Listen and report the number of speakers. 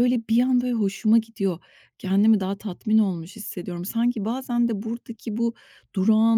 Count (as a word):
one